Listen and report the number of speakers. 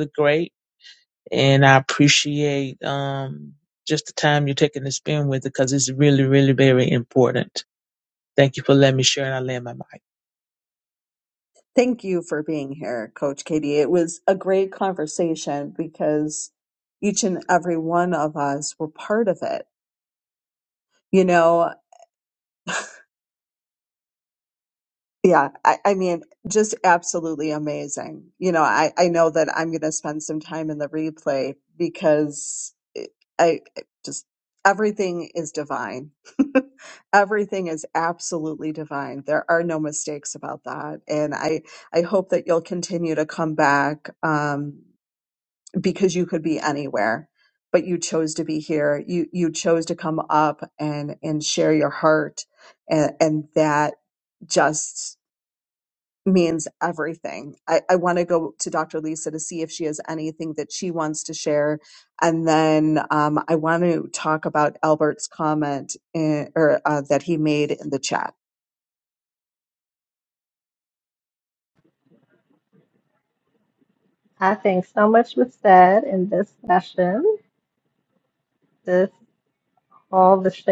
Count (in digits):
3